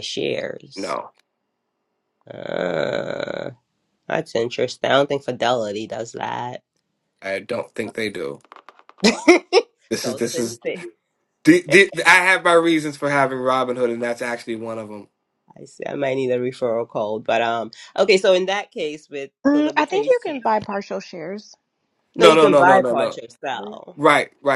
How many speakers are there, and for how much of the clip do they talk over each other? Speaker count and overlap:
three, about 9%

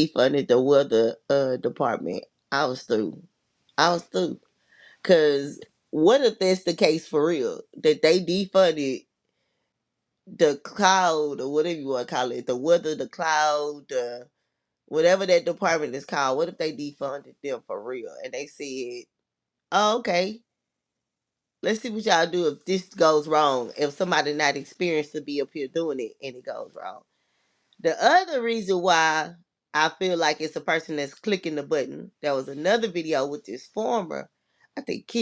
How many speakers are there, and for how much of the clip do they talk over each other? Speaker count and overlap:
one, no overlap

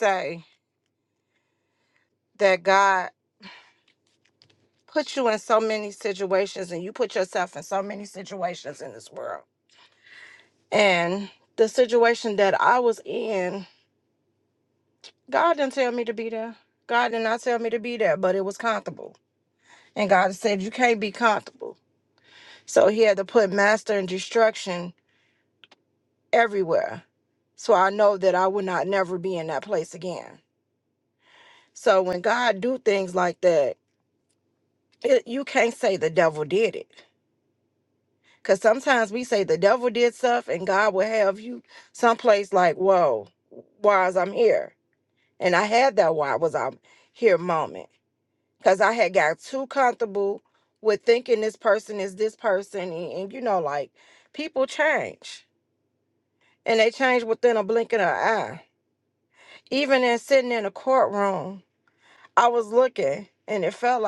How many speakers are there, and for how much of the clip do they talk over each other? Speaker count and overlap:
one, no overlap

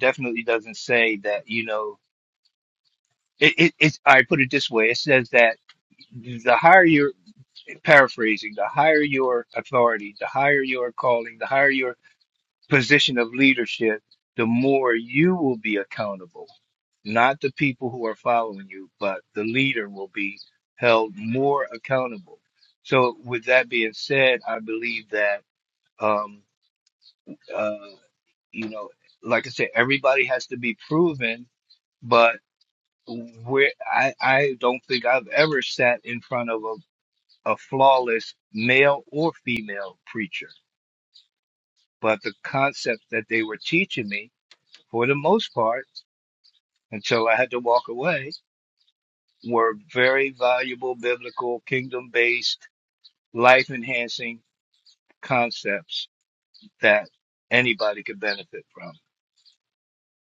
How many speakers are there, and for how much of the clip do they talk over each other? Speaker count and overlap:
one, no overlap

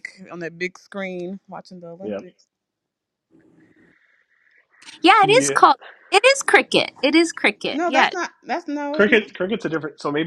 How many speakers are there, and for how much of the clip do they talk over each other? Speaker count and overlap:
three, about 12%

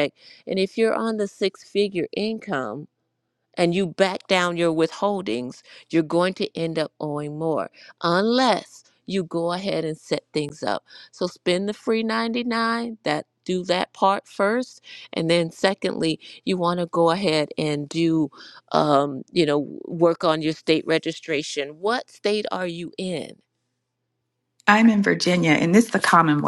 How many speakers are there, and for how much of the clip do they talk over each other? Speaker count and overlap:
two, no overlap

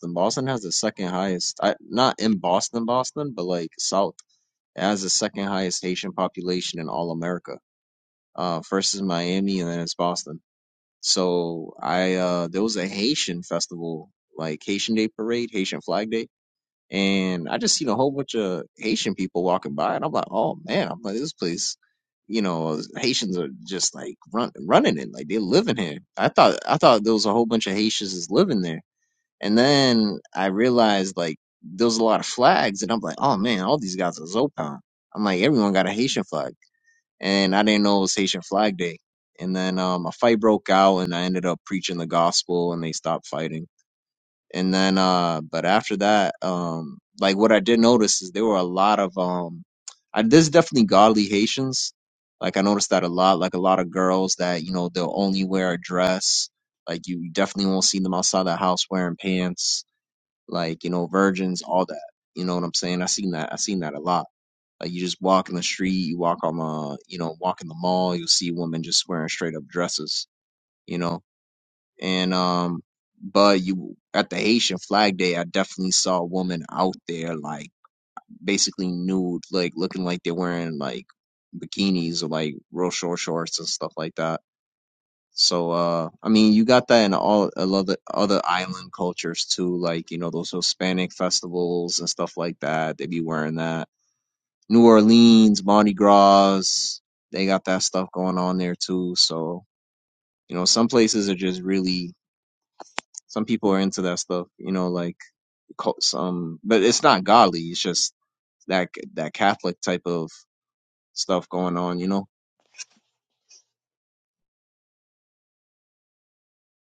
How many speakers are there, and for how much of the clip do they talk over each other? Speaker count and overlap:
one, no overlap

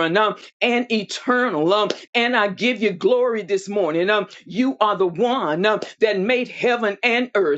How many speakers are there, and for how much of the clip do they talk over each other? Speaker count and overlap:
one, no overlap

